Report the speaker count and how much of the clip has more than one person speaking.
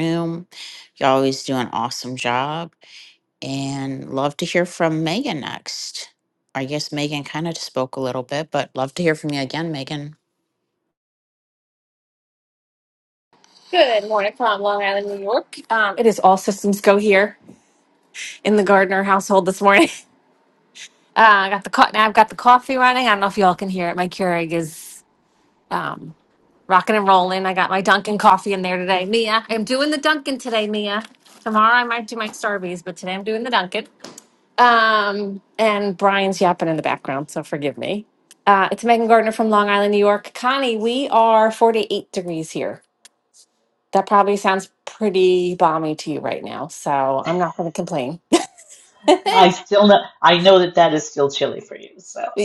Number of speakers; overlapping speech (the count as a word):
three, no overlap